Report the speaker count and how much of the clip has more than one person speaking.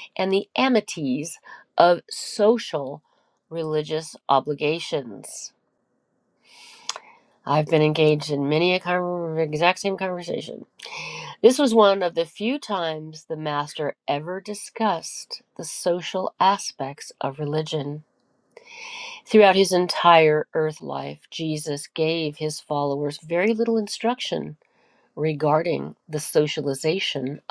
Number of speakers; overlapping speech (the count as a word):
one, no overlap